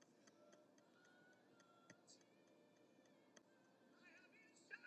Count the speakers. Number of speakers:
0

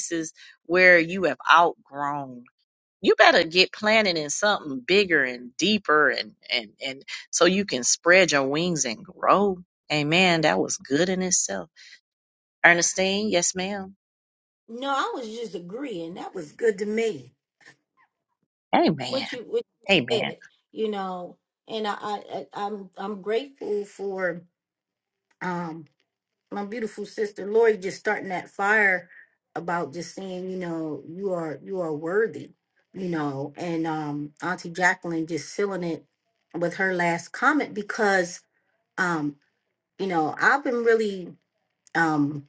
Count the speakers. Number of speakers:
2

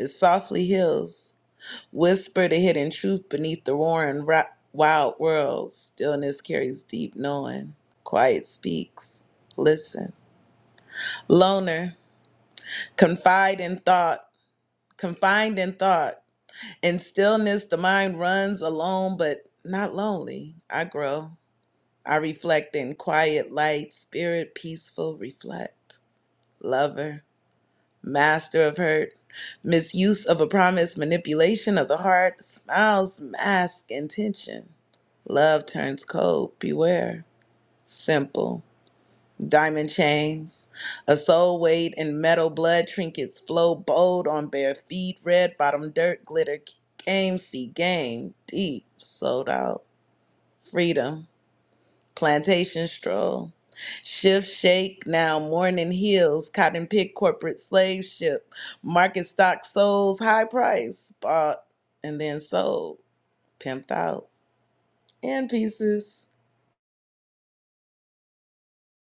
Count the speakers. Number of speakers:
1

